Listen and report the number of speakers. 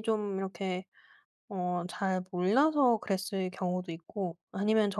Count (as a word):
one